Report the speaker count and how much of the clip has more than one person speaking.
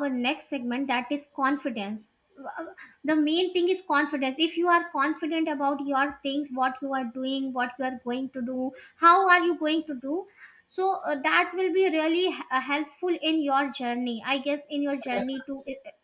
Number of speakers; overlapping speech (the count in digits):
1, no overlap